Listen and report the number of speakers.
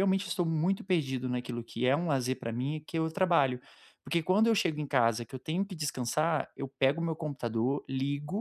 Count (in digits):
1